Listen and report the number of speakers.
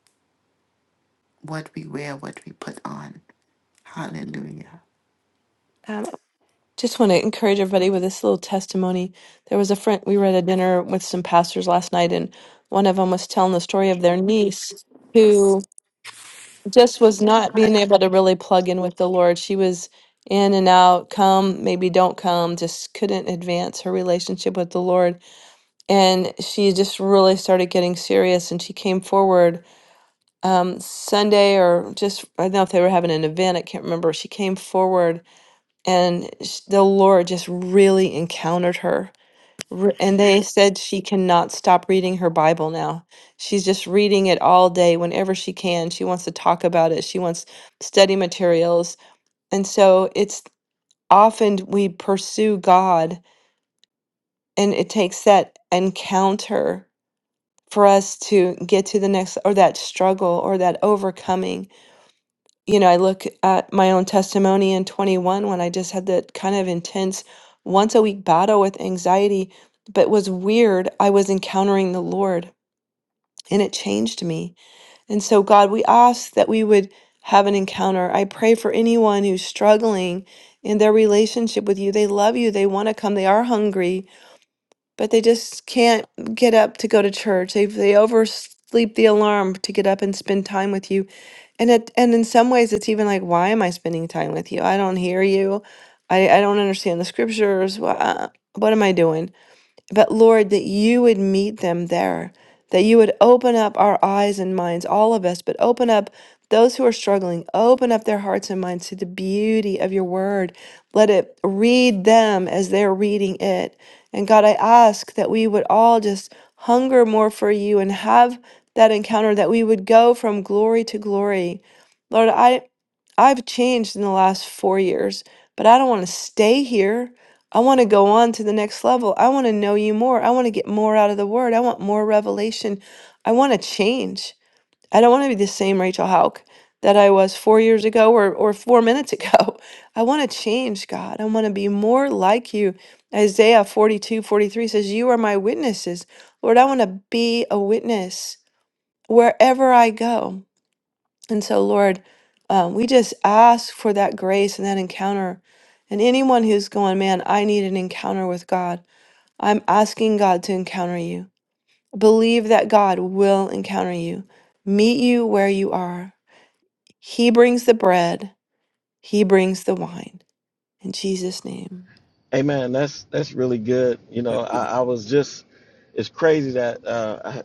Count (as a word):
three